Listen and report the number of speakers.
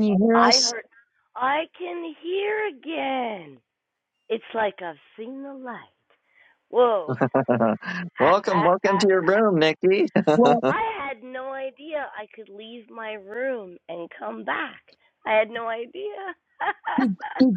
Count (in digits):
3